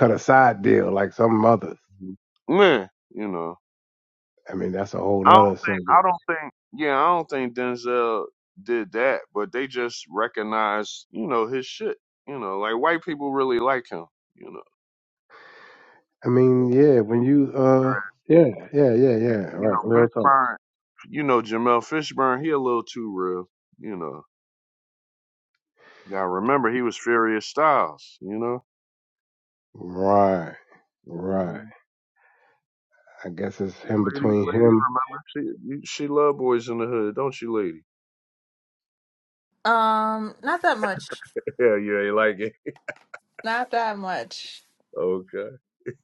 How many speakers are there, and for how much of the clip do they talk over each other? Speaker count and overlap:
3, about 7%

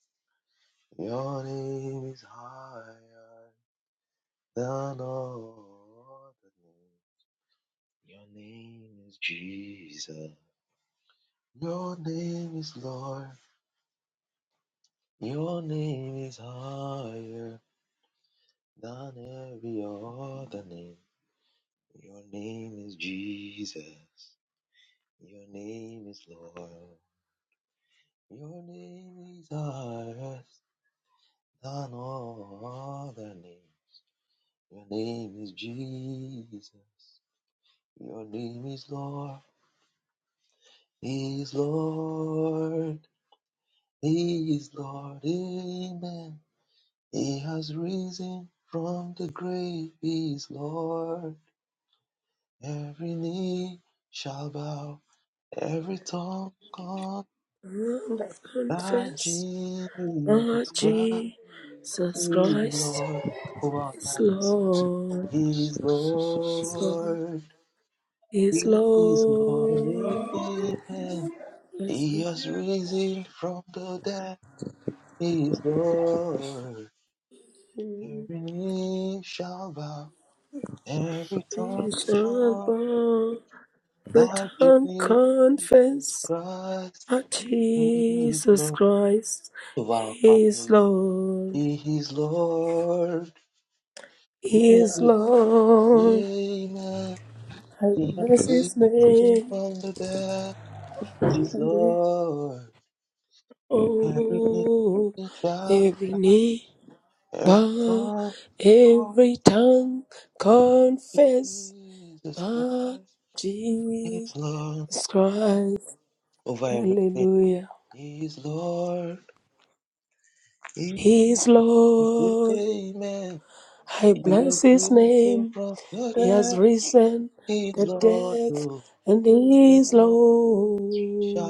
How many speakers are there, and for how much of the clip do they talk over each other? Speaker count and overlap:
2, about 12%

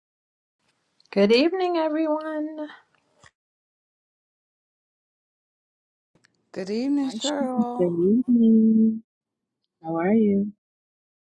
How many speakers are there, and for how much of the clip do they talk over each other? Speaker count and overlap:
3, about 8%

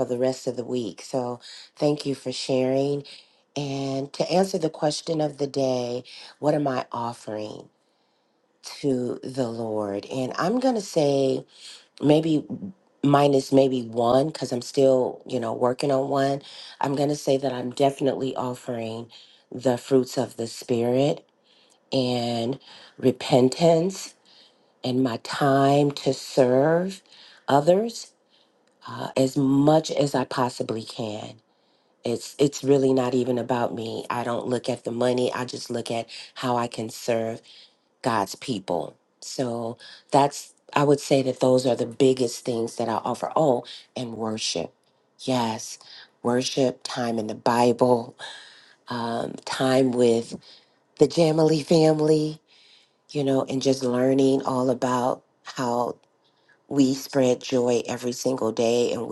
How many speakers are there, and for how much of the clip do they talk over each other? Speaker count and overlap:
1, no overlap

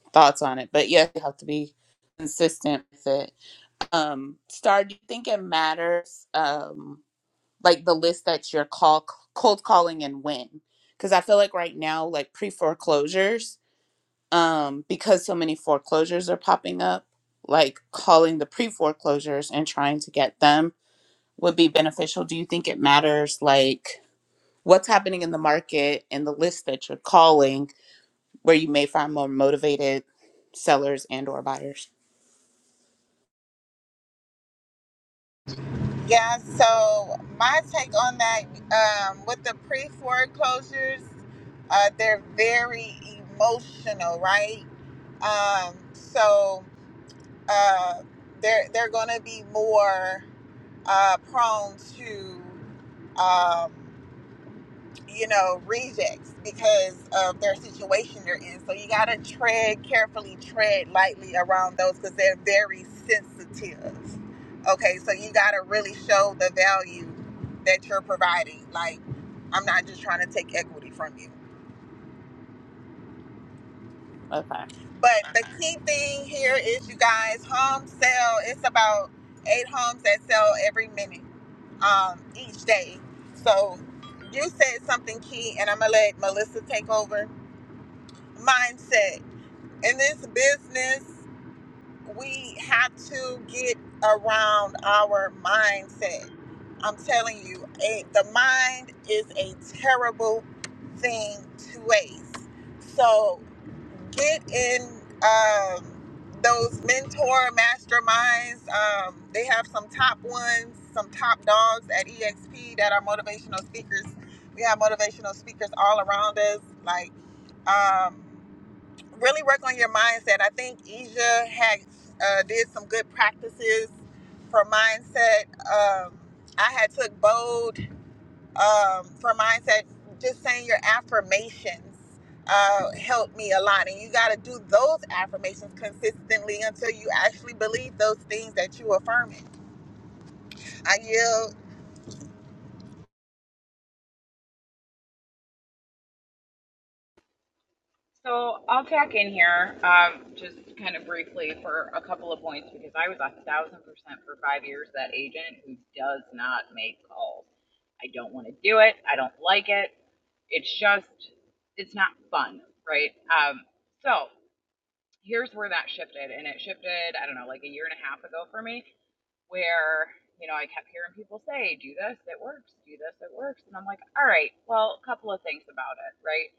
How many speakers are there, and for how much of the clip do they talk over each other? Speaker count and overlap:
3, no overlap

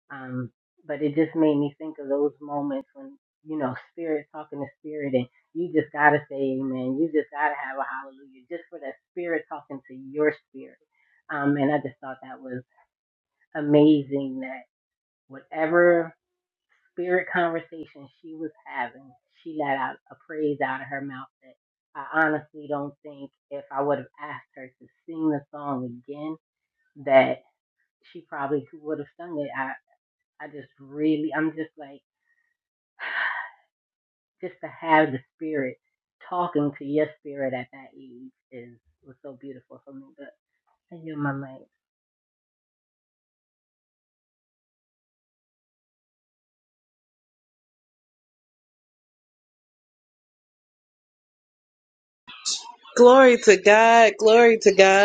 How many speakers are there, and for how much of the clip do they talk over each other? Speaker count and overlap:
2, no overlap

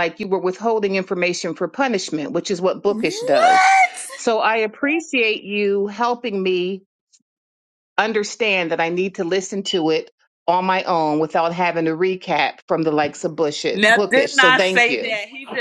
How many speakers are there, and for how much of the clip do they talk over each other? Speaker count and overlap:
2, about 13%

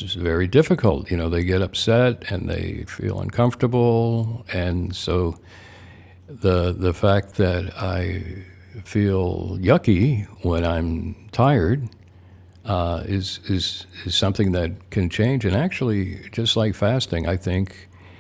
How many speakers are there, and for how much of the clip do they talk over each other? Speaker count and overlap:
1, no overlap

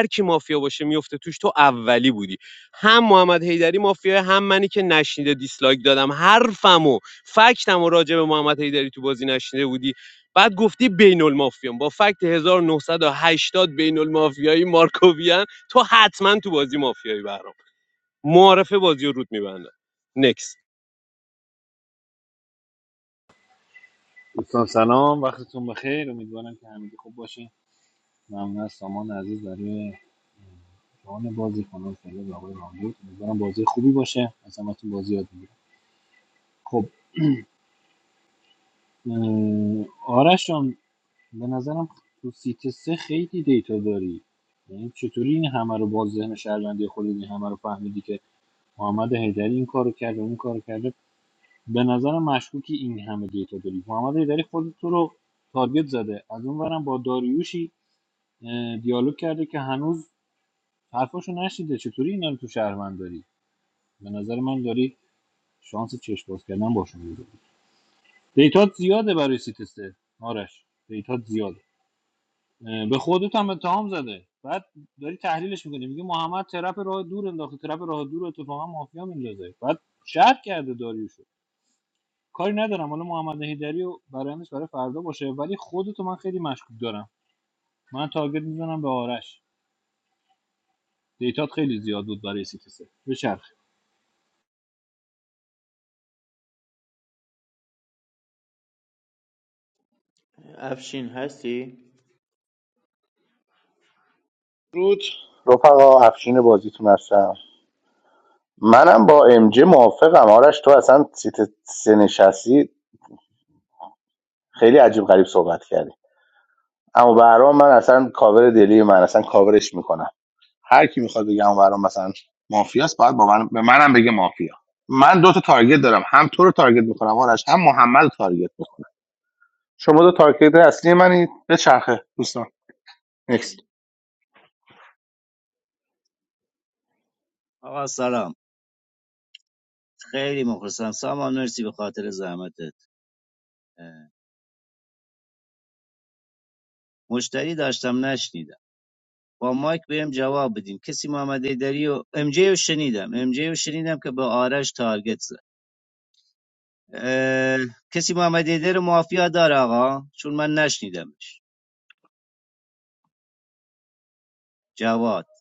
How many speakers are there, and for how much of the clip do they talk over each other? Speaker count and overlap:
5, no overlap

